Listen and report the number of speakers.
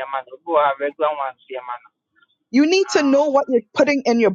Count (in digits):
2